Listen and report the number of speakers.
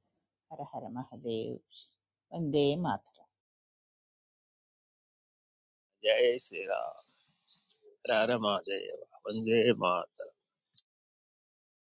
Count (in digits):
2